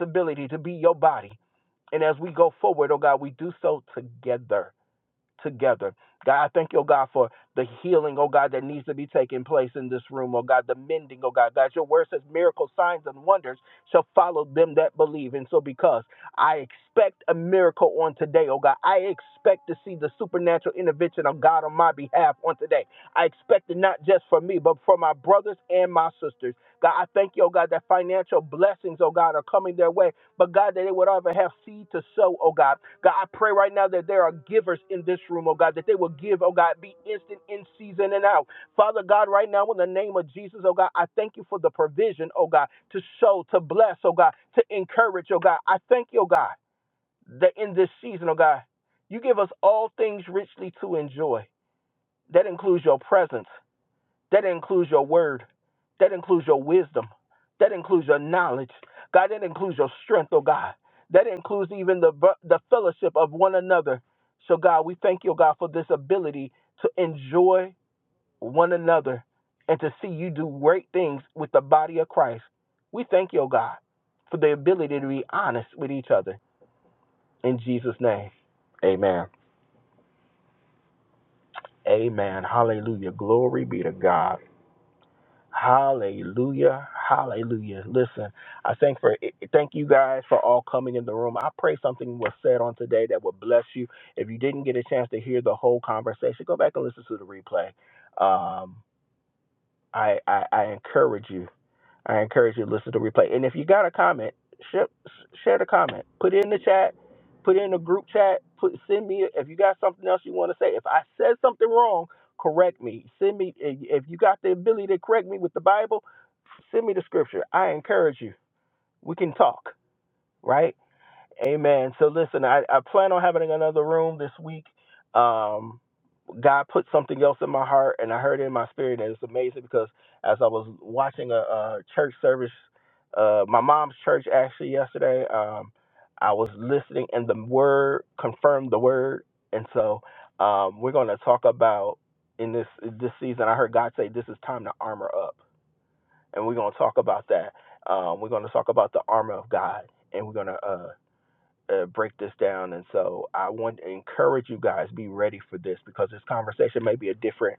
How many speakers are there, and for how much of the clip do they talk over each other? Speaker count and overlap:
1, no overlap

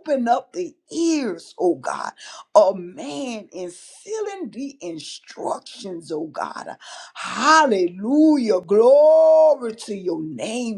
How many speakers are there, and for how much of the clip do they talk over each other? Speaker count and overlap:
1, no overlap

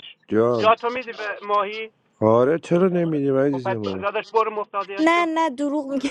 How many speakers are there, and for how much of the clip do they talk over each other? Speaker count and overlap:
3, about 16%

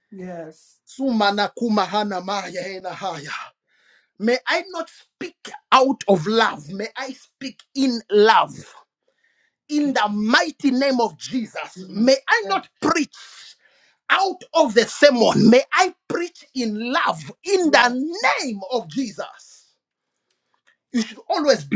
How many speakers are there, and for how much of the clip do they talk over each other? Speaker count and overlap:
2, about 3%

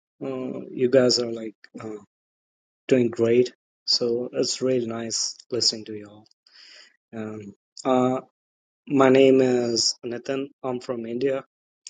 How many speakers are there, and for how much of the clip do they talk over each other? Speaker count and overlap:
1, no overlap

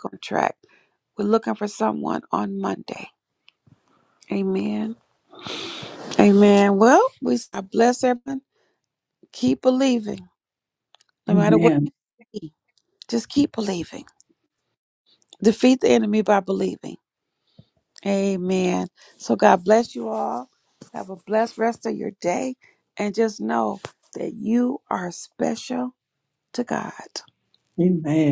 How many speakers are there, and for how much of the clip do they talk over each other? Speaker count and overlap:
2, about 1%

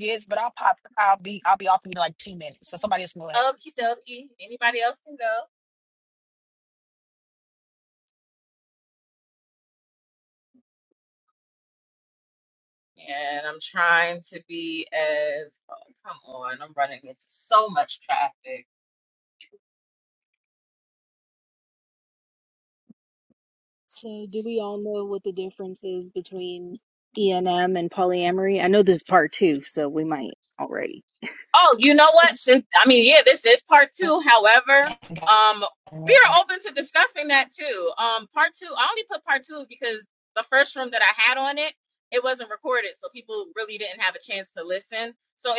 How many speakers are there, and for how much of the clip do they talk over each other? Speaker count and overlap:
3, about 1%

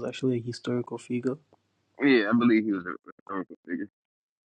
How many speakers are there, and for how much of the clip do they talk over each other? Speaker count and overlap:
2, no overlap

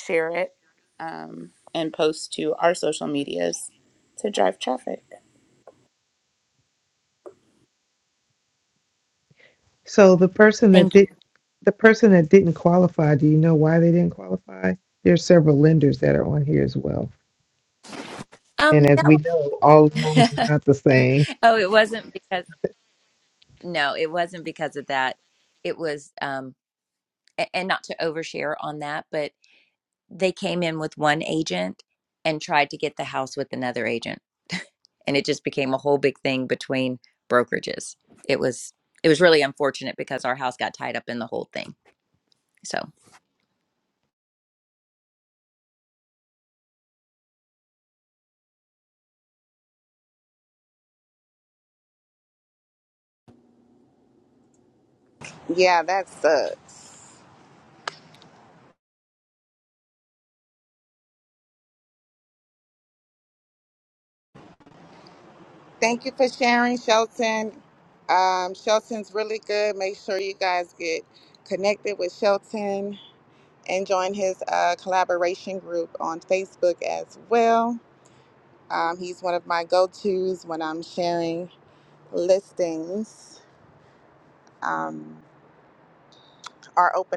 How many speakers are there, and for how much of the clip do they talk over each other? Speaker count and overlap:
4, about 1%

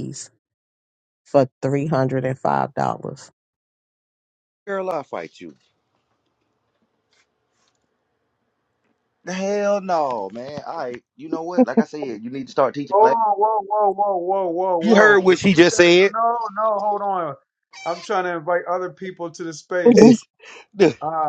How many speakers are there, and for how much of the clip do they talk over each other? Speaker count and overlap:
3, about 7%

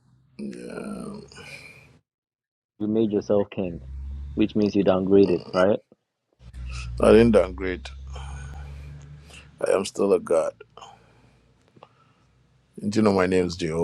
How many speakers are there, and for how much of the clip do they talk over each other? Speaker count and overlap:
2, no overlap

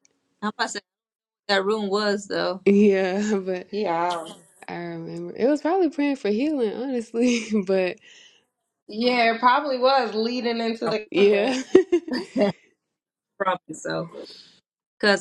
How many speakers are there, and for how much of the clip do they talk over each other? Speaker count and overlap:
3, about 4%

